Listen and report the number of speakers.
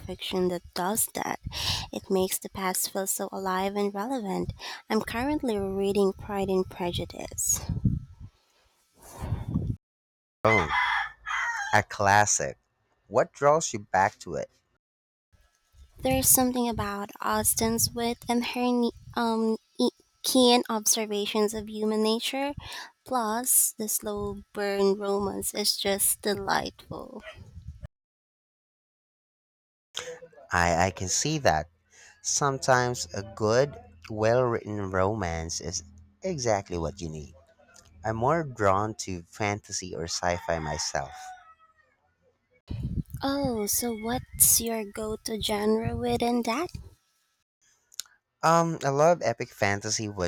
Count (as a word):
two